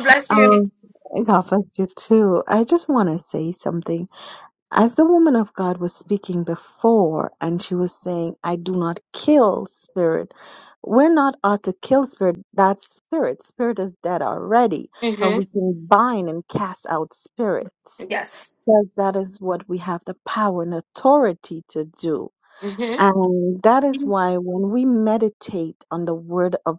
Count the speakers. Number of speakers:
2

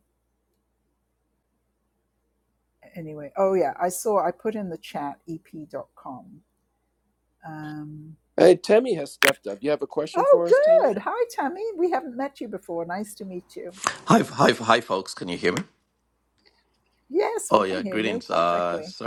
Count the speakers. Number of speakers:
3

